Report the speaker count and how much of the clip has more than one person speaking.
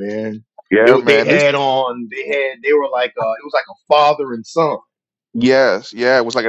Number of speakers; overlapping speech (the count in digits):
2, about 9%